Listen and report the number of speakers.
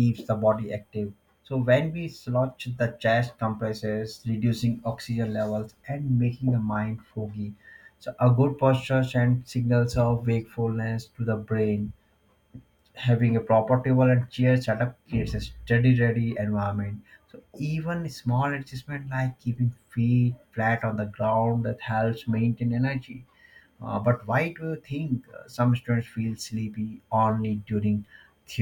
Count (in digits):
1